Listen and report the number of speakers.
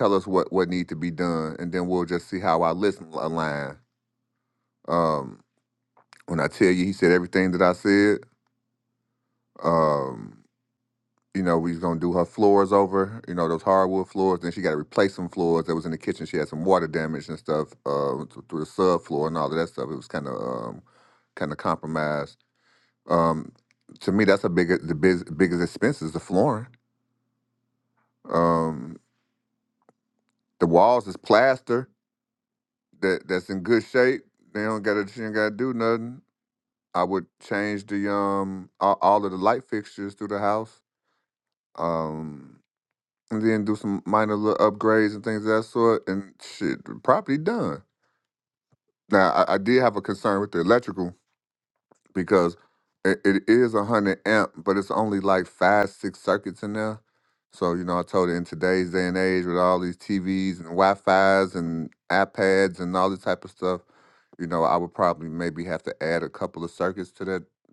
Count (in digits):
1